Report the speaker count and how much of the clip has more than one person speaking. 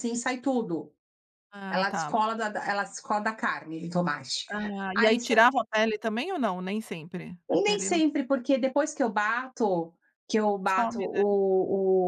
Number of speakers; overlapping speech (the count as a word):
two, about 17%